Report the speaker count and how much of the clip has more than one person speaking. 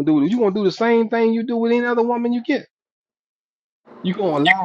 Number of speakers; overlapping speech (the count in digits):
1, no overlap